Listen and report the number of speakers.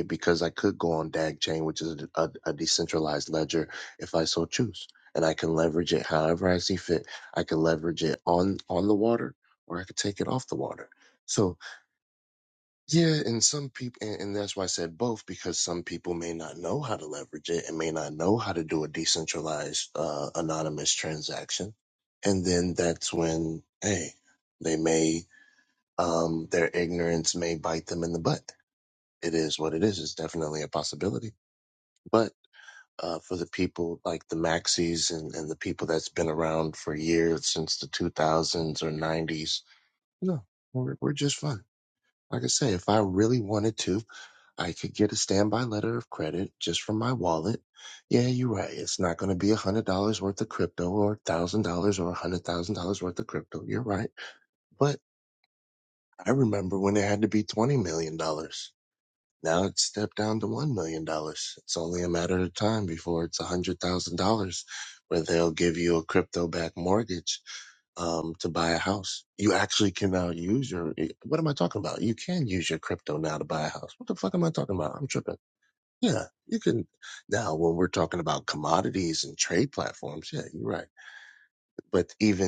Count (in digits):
1